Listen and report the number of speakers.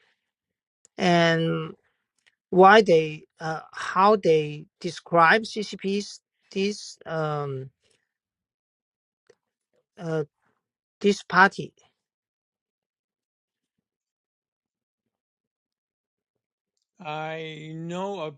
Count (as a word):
two